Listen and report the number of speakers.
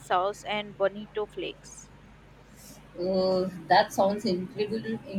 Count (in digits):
2